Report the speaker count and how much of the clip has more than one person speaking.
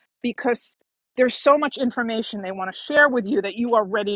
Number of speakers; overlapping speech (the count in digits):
1, no overlap